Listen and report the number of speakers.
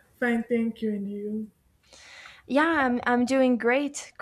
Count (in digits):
2